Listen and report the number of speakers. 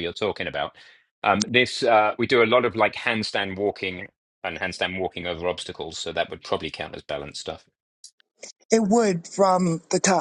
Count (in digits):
2